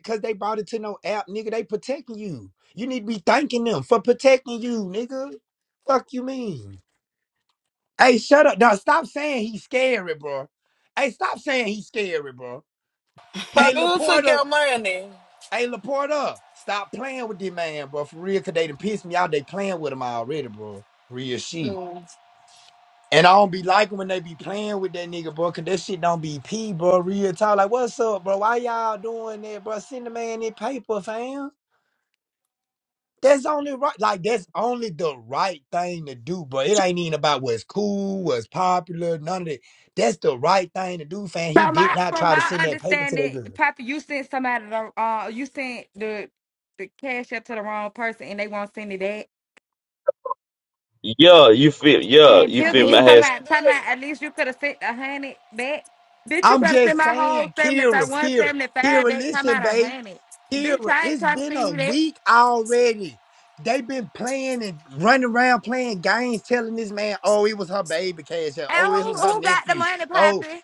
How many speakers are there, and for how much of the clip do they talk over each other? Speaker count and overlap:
four, about 16%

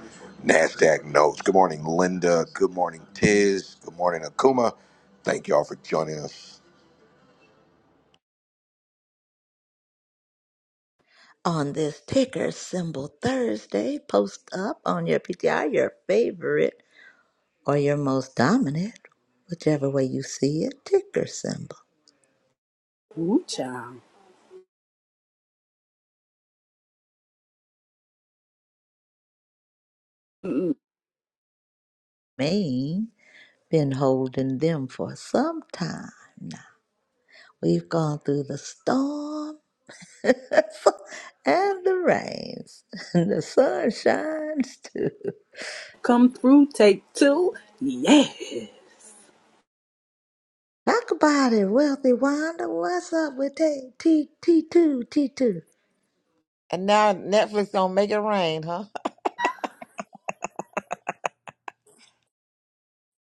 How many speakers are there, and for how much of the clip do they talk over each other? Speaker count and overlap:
four, no overlap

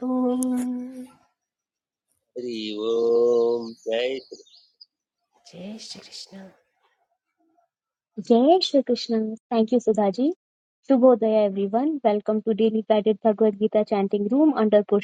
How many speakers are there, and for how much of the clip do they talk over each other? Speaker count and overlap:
three, no overlap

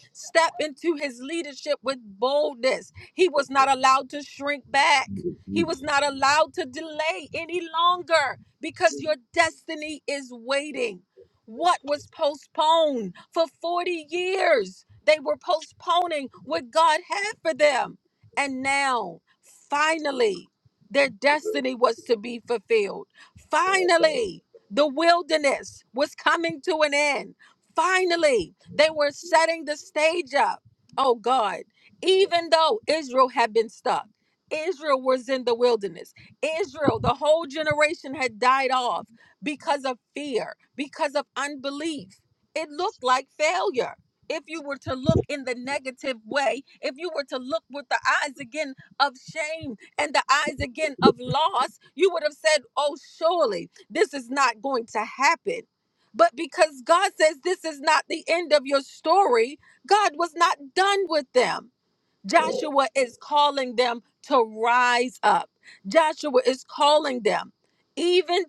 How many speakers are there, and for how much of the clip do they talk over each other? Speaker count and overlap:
one, no overlap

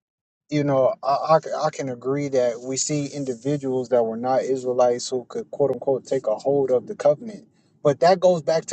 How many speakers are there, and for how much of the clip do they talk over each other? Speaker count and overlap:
one, no overlap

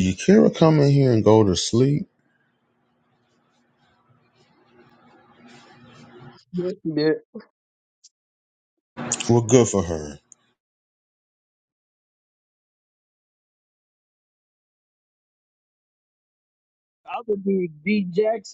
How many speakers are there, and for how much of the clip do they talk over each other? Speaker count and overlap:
two, no overlap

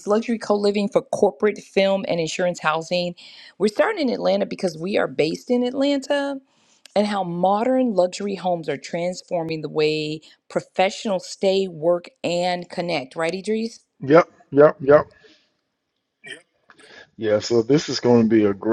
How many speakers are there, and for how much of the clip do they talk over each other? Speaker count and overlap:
two, no overlap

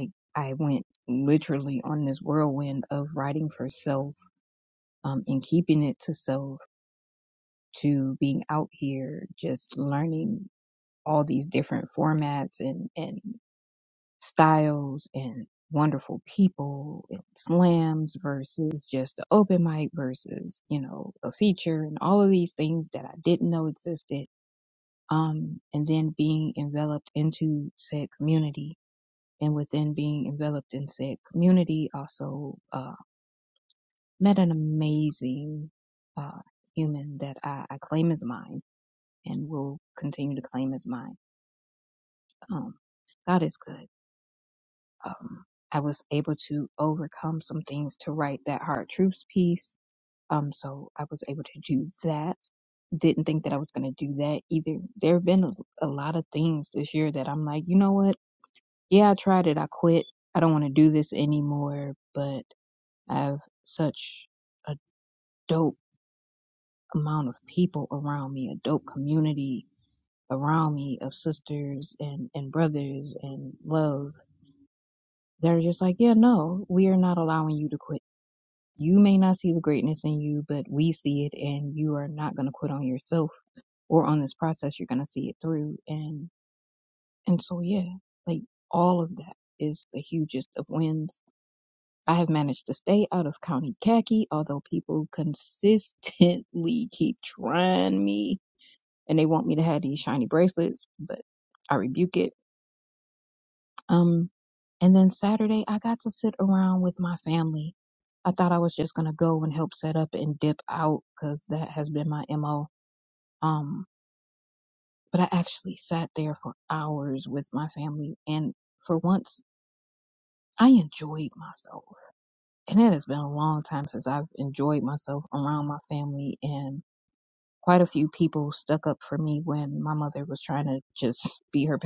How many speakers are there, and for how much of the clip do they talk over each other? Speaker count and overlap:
one, no overlap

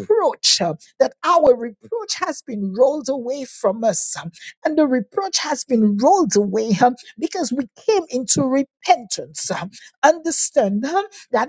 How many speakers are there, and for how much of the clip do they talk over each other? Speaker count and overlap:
one, no overlap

